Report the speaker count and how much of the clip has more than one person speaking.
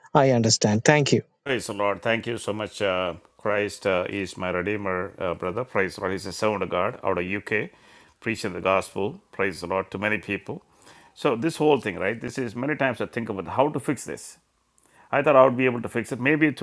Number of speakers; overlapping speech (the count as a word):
two, no overlap